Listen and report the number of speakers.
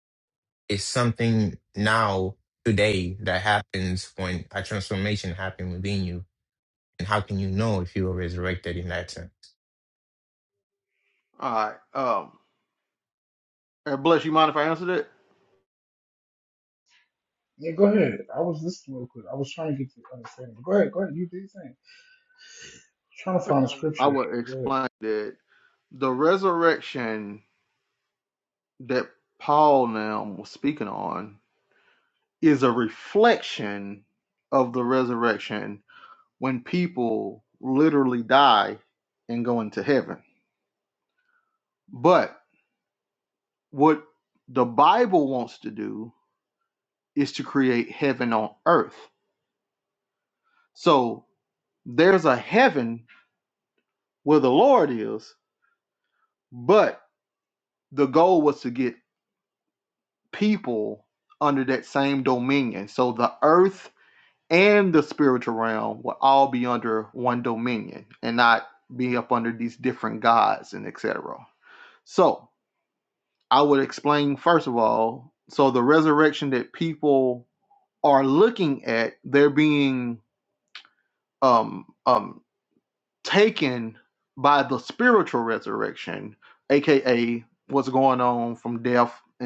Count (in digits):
3